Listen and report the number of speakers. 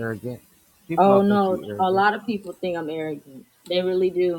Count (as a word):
two